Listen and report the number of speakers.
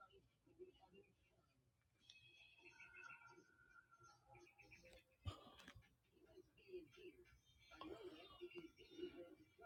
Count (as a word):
zero